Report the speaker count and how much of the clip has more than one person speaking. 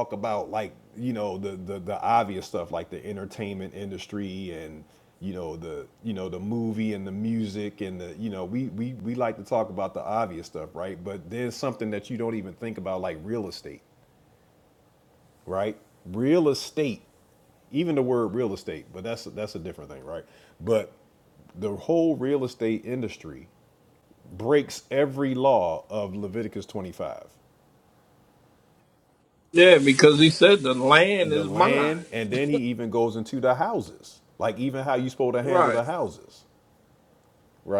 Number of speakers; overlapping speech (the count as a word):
two, about 3%